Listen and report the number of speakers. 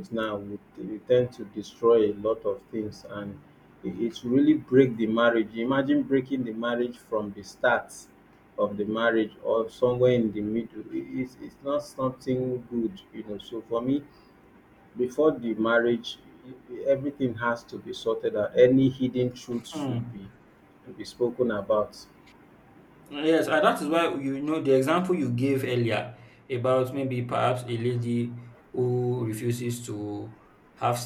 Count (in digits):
2